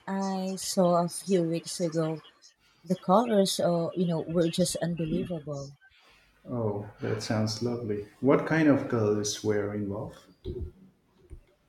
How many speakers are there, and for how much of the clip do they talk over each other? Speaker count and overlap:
two, no overlap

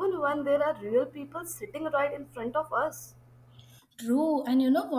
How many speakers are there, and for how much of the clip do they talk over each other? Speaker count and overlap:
two, no overlap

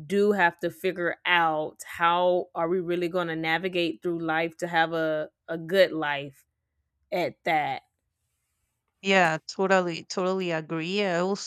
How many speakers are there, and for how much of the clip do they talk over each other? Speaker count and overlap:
two, no overlap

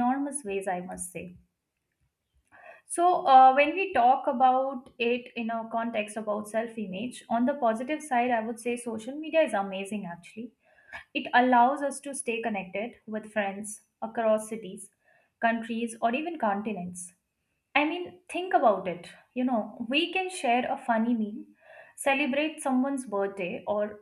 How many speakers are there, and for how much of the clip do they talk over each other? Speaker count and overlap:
one, no overlap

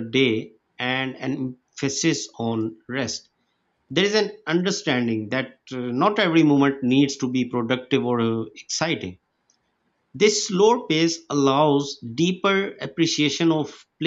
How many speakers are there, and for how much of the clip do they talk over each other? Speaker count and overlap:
one, no overlap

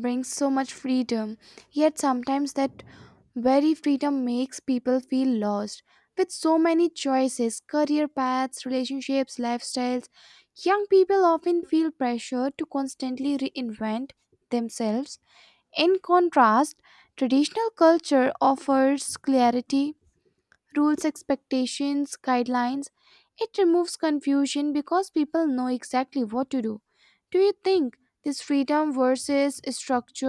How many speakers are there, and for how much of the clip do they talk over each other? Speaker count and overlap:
one, no overlap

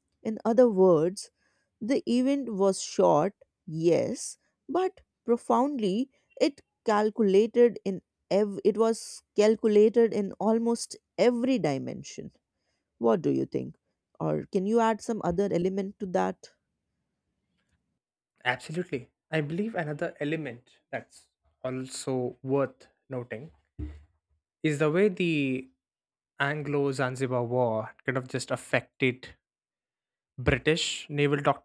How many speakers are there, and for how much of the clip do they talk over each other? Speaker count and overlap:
two, no overlap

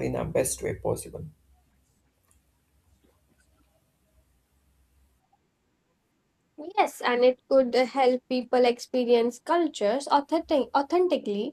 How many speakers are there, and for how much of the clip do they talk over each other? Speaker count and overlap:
two, no overlap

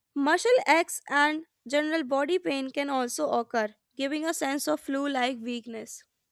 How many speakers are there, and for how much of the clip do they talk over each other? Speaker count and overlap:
one, no overlap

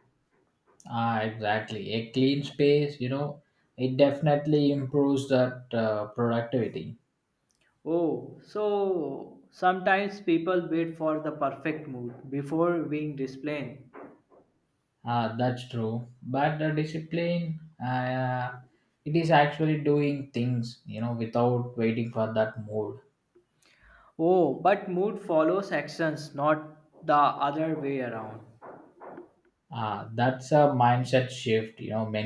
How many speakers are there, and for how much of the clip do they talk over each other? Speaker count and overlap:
two, no overlap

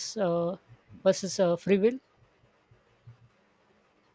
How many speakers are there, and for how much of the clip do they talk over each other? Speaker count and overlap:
one, no overlap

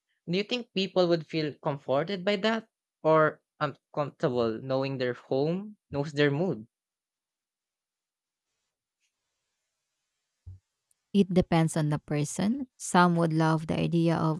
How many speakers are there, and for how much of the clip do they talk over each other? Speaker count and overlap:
two, no overlap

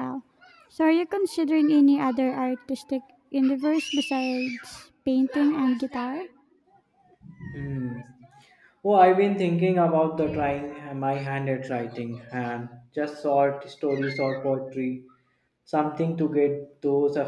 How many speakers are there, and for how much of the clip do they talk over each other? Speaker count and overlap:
two, no overlap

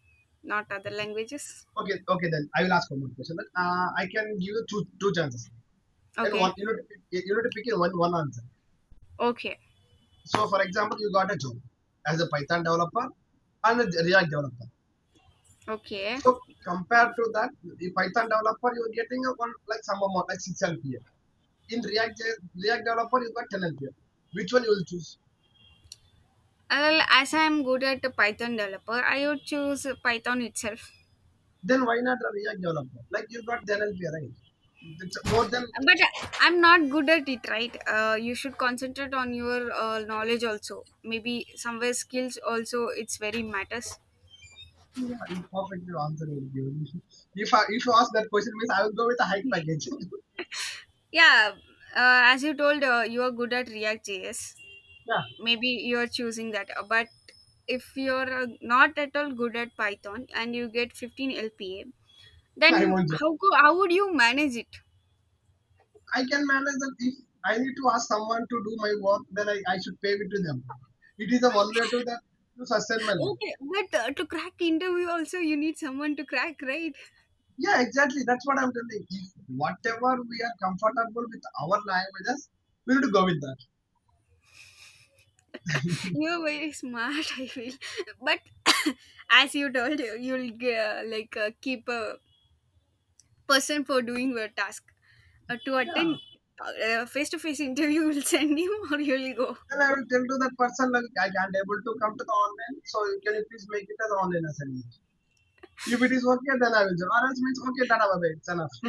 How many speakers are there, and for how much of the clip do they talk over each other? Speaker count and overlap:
two, about 1%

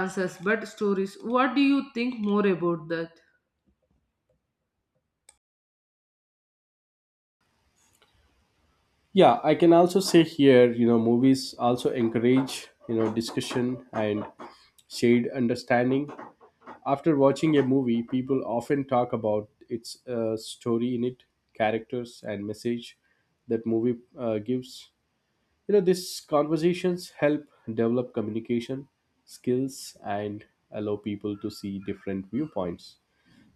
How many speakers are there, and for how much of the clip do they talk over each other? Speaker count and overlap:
two, no overlap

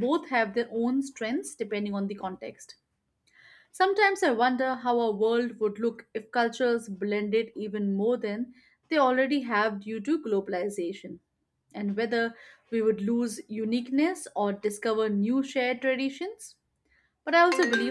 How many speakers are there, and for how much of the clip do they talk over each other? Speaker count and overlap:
one, no overlap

